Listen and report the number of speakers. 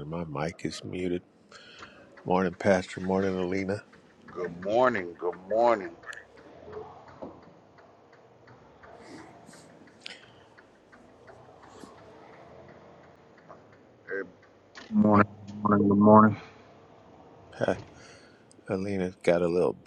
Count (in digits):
3